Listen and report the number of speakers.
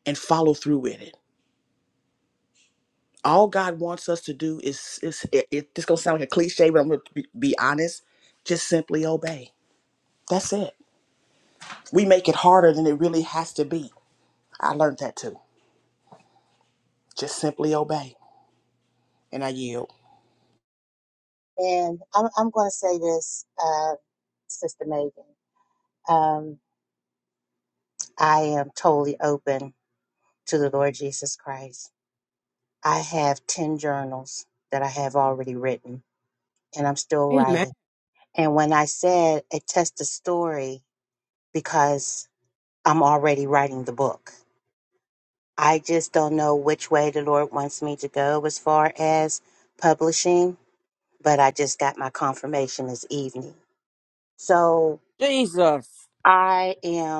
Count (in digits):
3